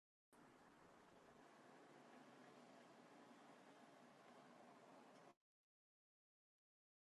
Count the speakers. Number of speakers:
0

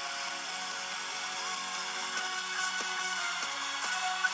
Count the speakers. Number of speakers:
0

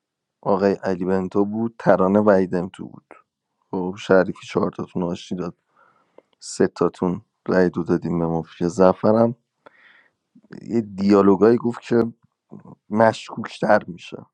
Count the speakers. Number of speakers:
1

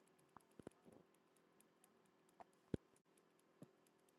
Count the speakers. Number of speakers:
0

